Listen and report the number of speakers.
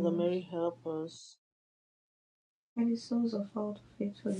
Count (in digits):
2